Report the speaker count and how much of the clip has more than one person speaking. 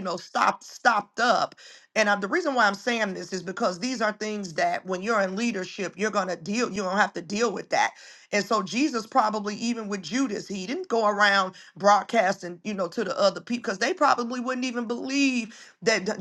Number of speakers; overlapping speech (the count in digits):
1, no overlap